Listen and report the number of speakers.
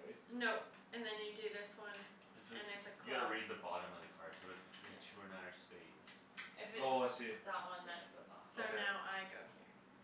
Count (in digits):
4